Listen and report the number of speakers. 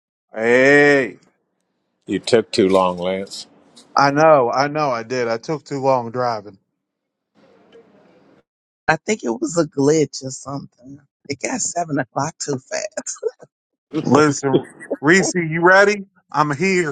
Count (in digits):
3